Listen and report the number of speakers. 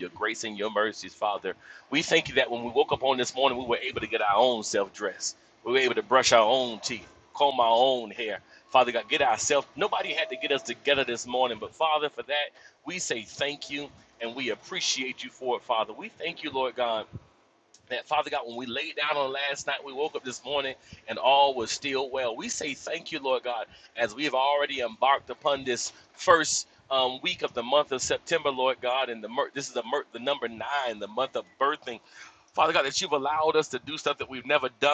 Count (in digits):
1